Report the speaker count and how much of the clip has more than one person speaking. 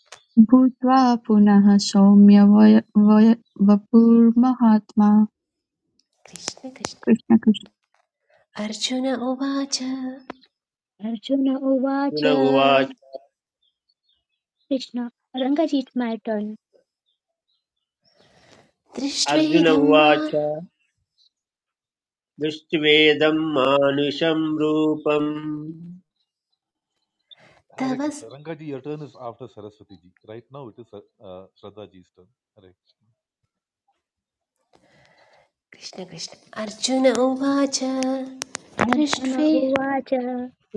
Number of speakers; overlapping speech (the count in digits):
5, about 5%